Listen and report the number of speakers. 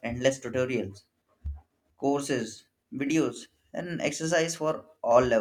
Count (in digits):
1